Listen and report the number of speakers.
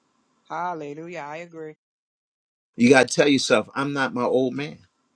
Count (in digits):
2